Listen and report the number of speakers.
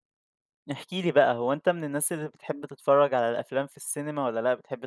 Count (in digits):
1